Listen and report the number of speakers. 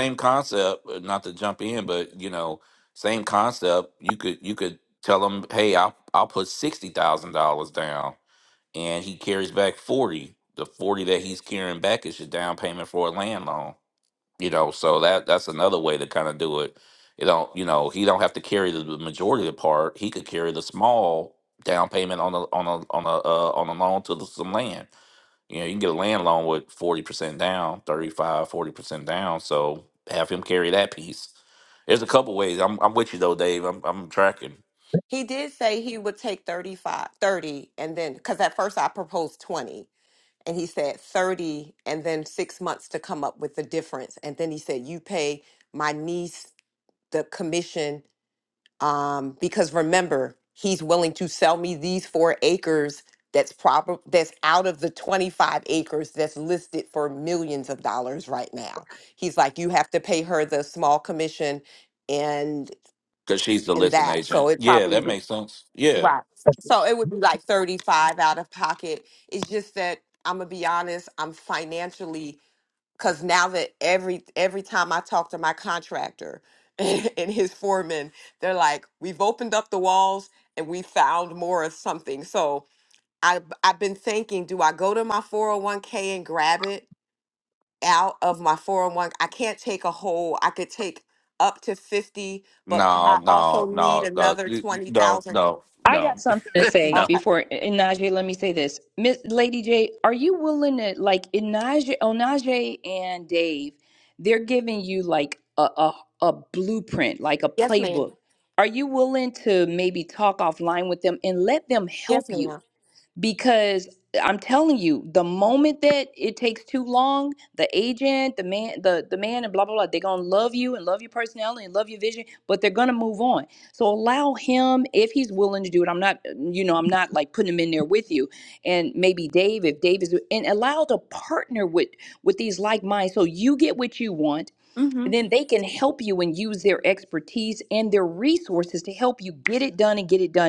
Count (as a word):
three